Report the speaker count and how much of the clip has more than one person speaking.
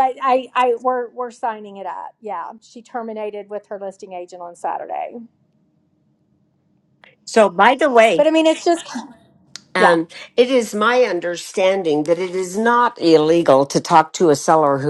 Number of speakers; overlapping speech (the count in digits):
2, about 2%